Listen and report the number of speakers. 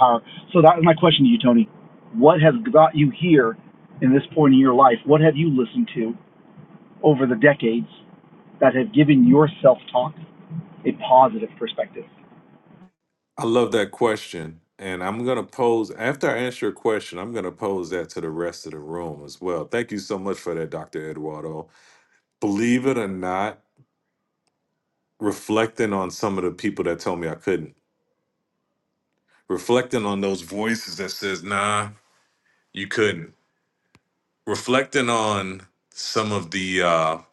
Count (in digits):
2